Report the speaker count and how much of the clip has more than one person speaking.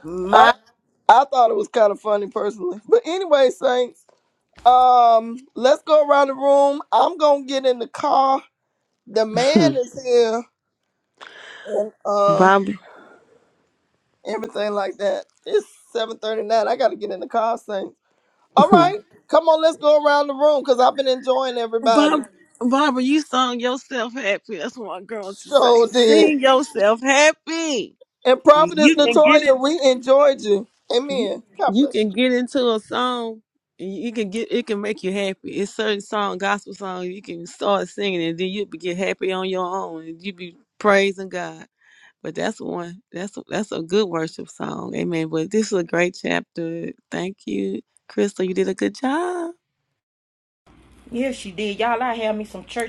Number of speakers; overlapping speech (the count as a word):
three, about 6%